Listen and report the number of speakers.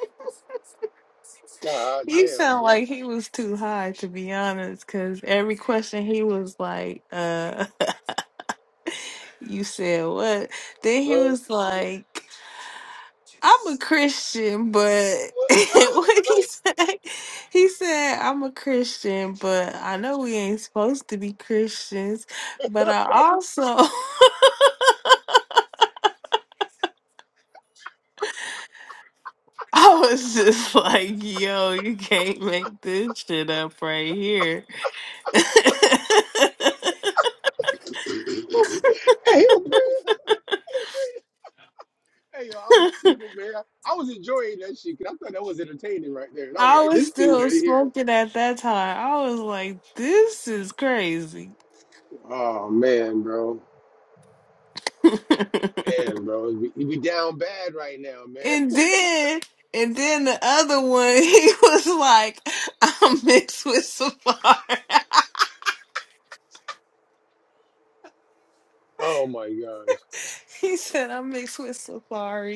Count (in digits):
2